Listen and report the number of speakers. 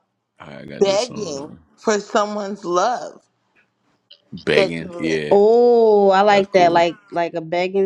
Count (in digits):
3